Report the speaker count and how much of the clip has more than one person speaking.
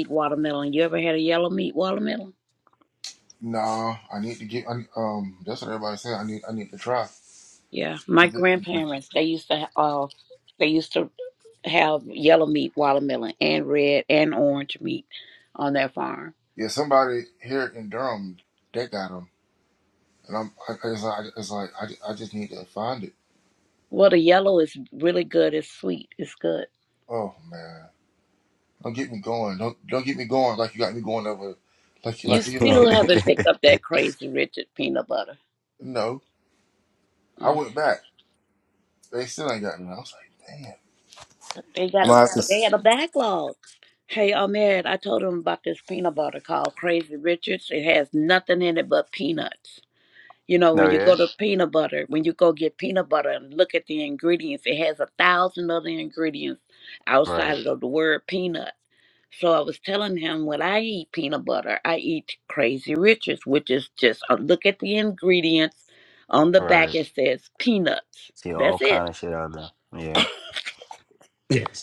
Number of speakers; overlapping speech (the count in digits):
3, about 4%